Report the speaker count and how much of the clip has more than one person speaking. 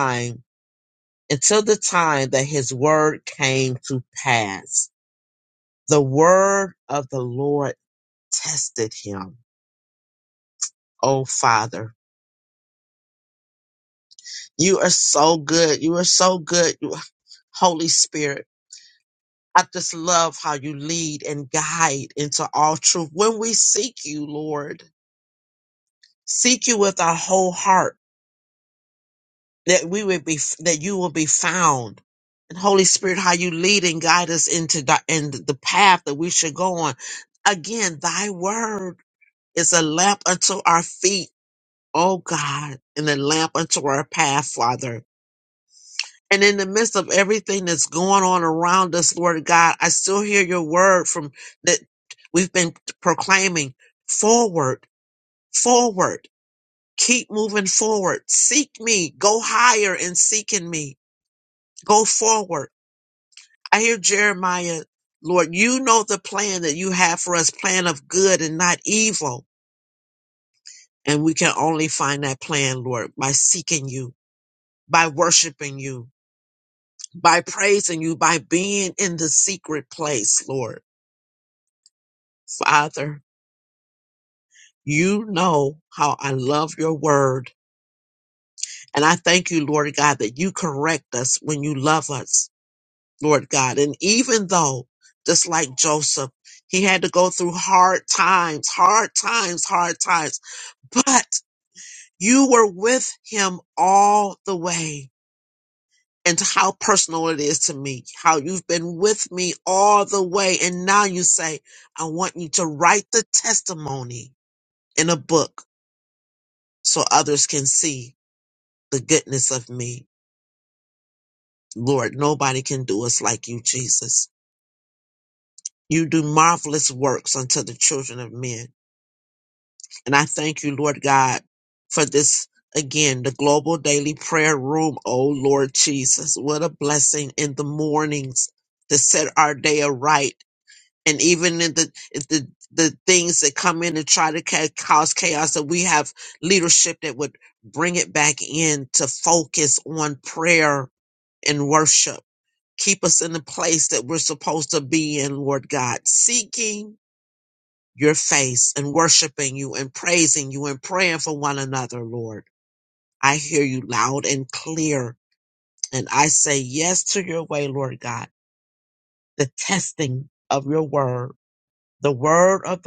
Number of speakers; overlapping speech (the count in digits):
1, no overlap